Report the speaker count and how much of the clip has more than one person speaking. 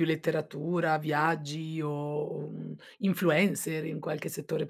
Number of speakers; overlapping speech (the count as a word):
one, no overlap